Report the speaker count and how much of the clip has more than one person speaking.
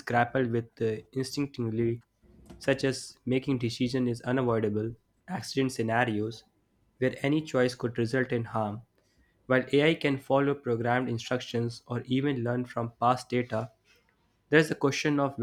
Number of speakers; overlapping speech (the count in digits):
1, no overlap